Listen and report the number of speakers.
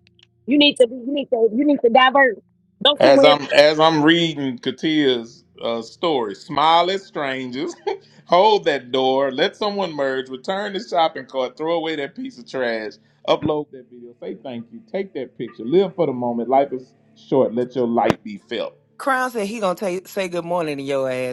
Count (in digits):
3